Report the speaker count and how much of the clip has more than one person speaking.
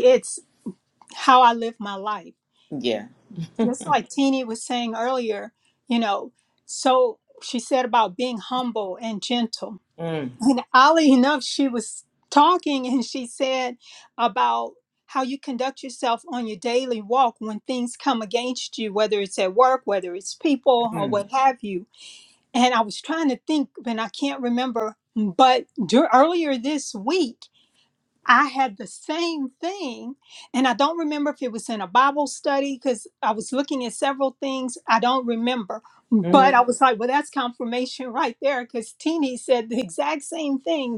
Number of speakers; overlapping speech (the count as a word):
two, about 2%